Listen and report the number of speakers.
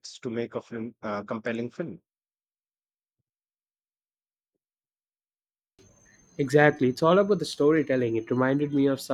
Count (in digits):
2